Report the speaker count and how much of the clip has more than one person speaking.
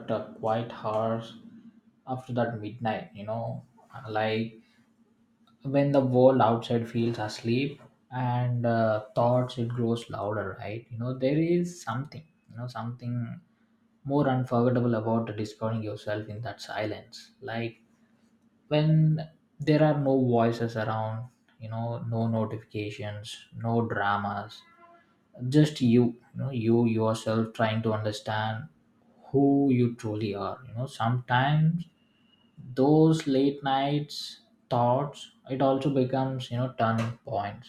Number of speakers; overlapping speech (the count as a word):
one, no overlap